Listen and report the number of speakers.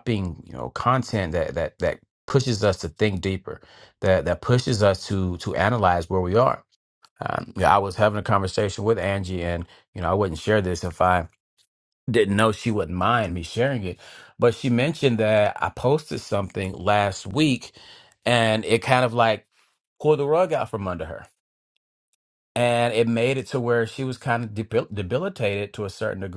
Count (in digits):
1